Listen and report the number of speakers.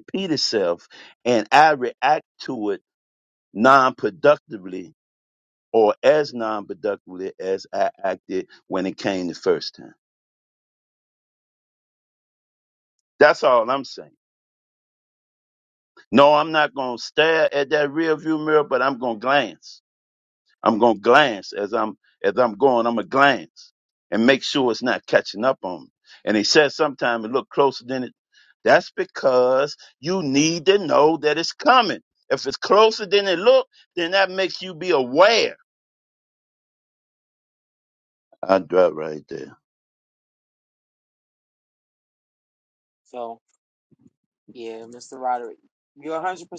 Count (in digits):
2